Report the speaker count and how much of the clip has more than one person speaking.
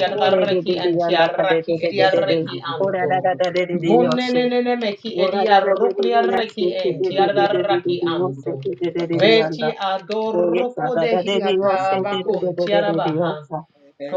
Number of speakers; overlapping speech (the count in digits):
2, about 75%